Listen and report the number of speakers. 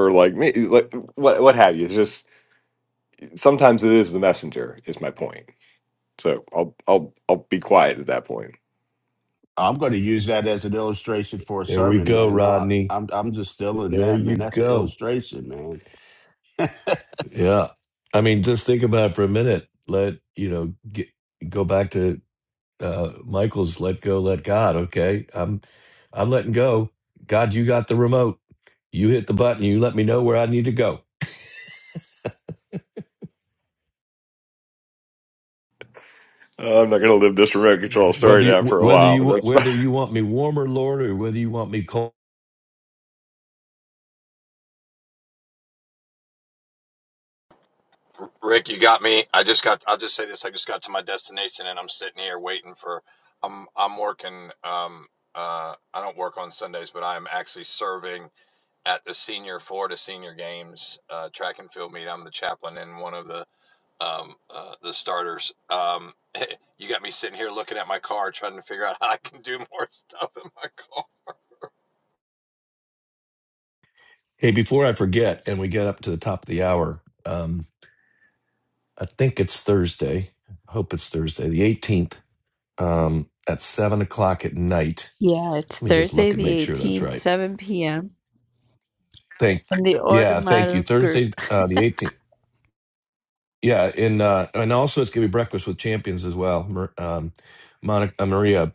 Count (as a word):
five